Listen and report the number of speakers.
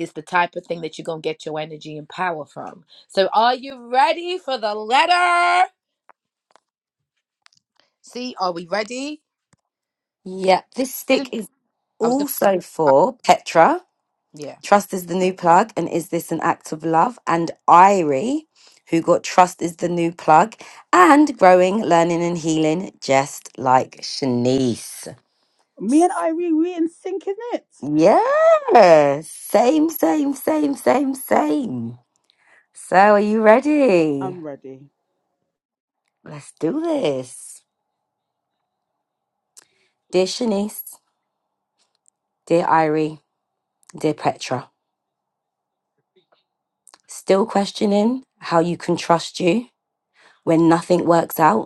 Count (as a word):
three